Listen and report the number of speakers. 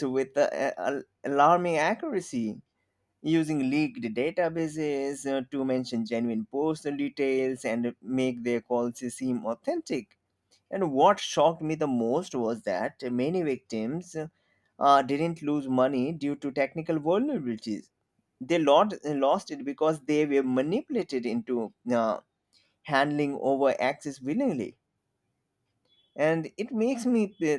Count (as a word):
one